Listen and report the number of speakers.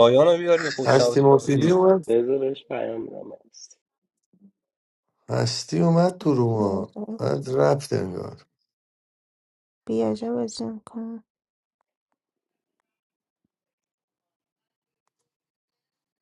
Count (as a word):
four